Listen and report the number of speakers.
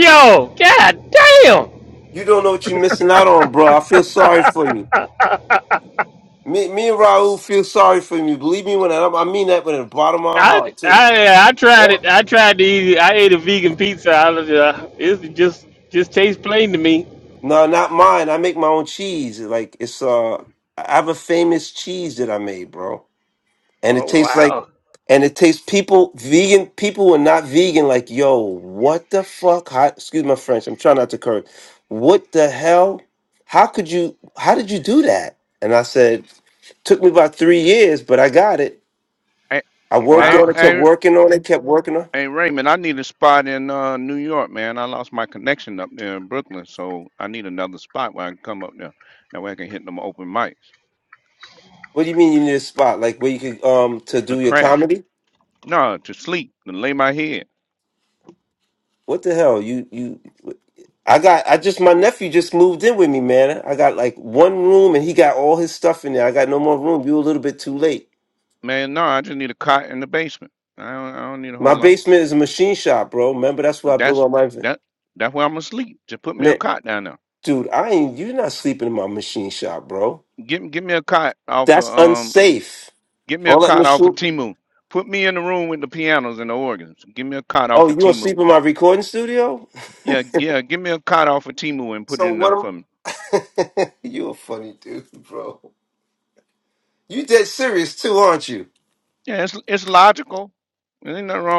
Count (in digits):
3